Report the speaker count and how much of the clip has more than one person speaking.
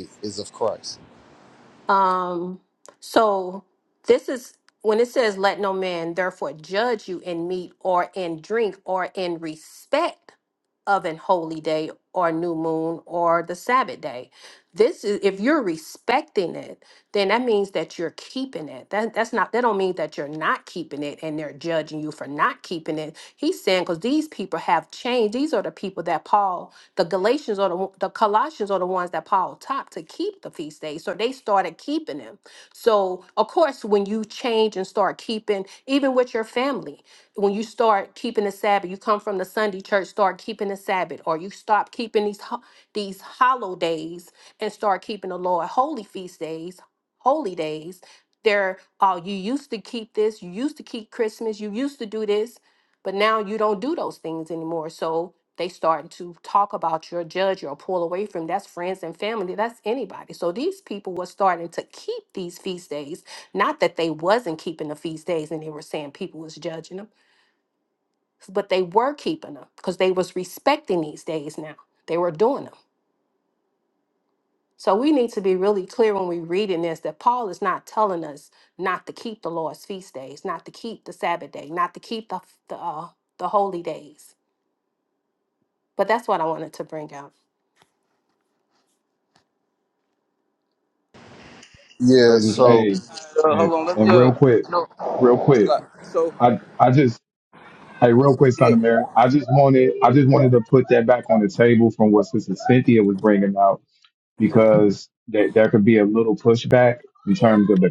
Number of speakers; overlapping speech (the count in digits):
4, about 2%